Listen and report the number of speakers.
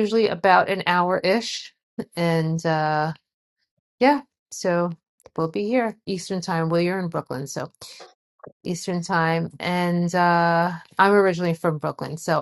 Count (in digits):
1